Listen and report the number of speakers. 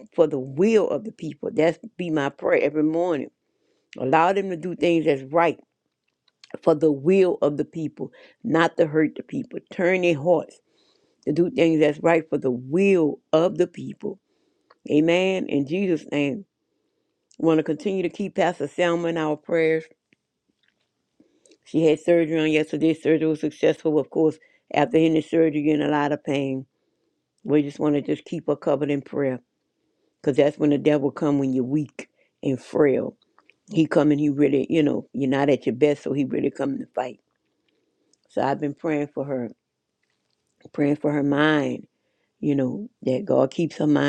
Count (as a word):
one